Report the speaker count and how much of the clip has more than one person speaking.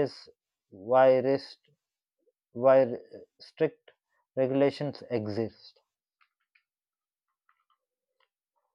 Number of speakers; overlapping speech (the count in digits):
1, no overlap